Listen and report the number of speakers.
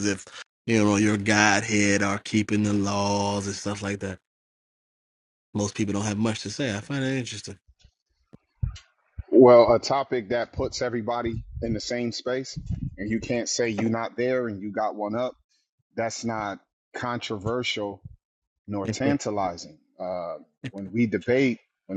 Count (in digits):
2